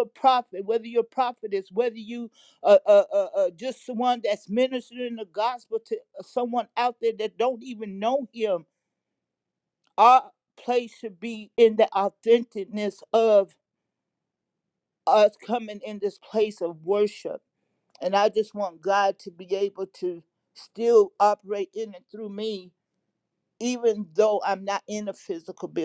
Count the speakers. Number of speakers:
1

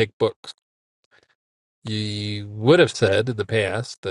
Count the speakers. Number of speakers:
1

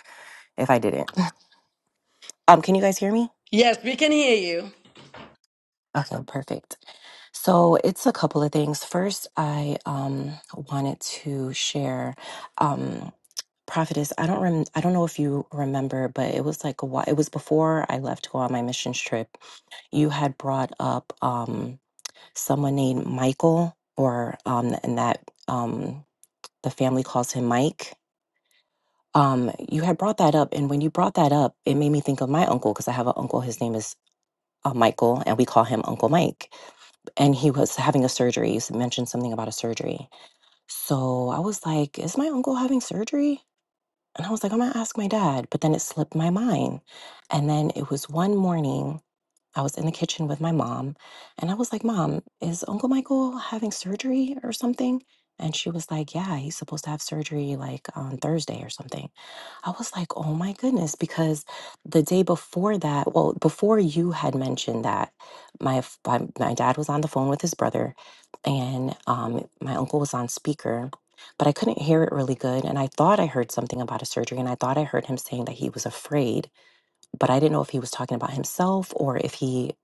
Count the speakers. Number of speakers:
2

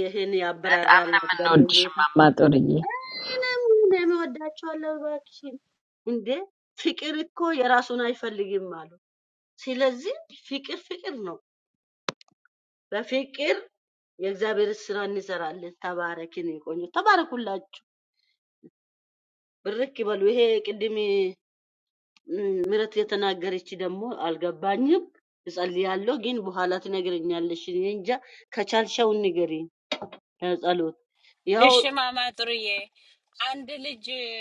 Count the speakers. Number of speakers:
3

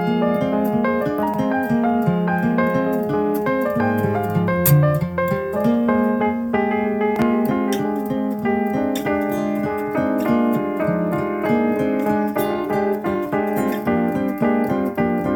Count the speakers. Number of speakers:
0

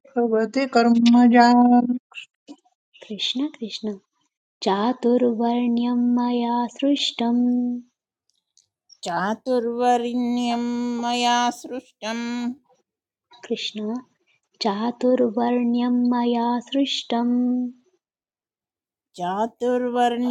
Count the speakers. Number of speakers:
3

